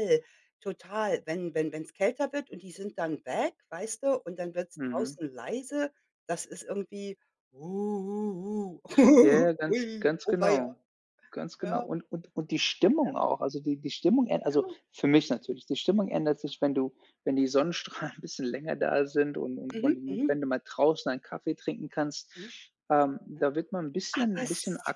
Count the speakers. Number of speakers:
2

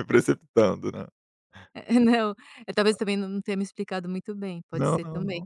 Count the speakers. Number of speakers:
2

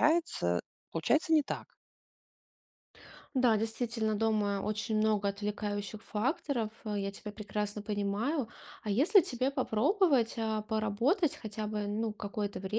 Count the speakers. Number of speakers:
2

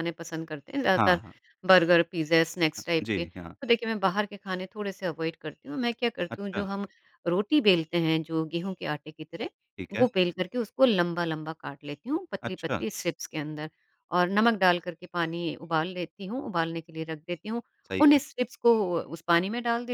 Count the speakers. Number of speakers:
2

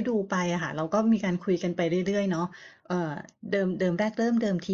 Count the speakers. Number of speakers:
1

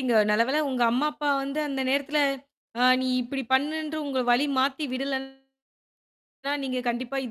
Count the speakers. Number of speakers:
1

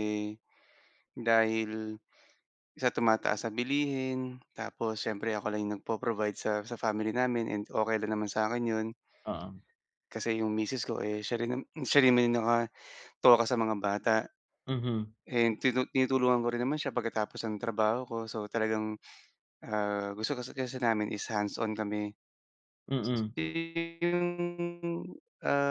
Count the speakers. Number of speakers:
2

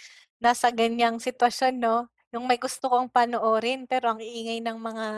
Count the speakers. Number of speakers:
1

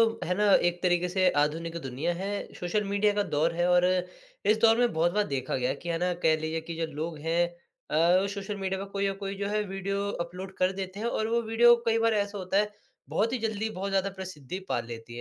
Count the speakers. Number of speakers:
1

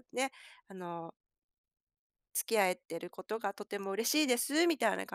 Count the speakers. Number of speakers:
1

